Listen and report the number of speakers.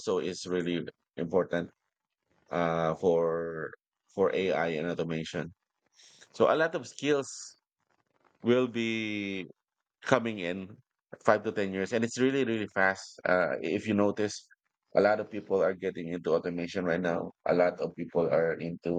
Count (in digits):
1